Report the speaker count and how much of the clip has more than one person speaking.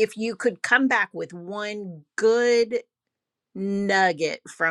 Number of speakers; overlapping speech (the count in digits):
1, no overlap